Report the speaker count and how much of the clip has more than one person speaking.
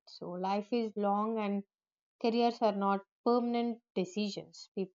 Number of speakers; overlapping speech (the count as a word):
one, no overlap